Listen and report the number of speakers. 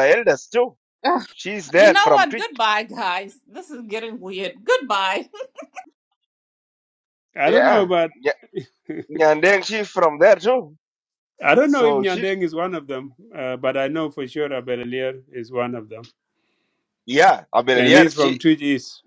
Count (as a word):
three